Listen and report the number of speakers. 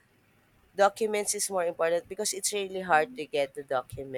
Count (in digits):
1